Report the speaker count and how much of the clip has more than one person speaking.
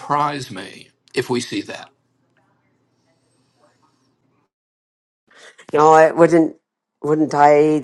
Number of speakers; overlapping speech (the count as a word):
two, no overlap